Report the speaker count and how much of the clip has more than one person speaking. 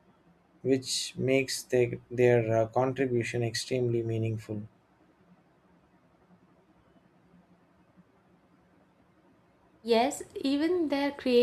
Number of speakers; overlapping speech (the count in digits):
2, no overlap